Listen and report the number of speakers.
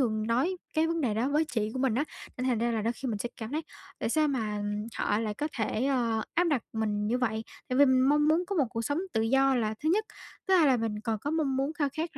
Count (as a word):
one